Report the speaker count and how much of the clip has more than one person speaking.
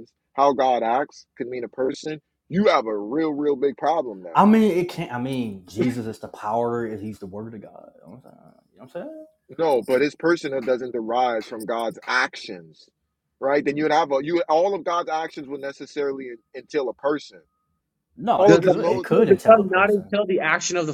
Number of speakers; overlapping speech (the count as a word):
three, about 9%